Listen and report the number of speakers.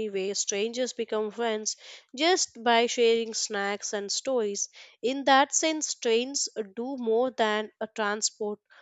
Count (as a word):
one